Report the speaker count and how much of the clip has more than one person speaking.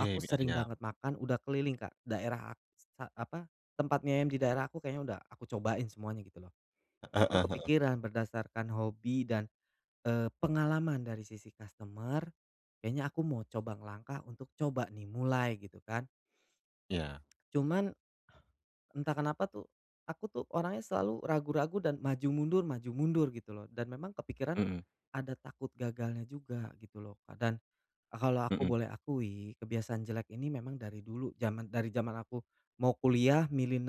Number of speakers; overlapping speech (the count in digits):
2, about 4%